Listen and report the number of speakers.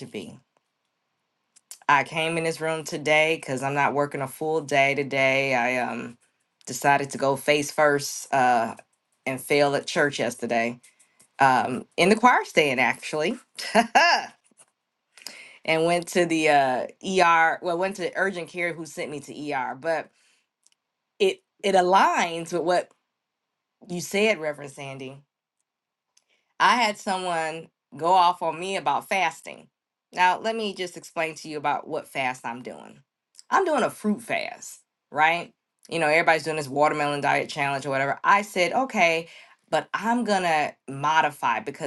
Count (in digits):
1